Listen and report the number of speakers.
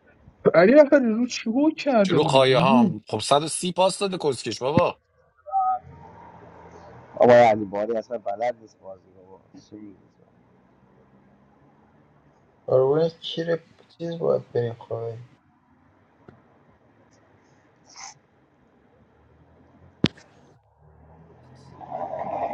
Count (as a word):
four